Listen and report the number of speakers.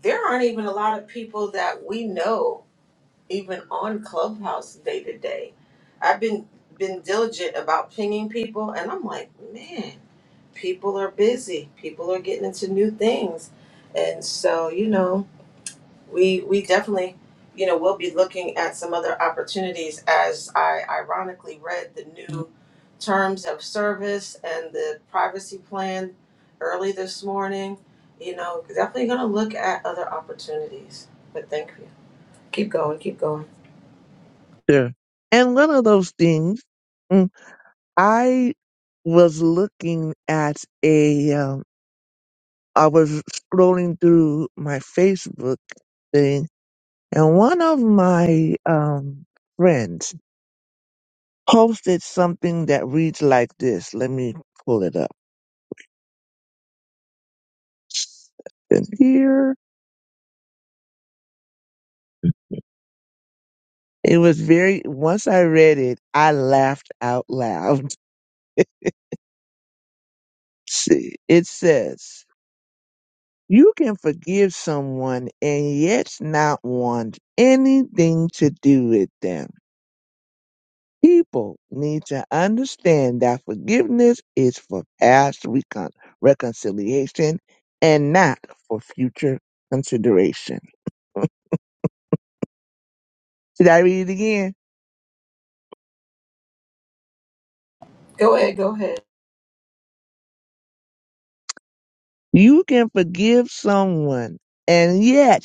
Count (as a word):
two